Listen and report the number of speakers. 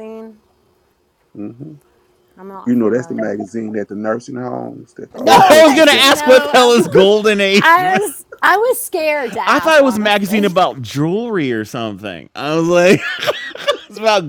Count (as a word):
three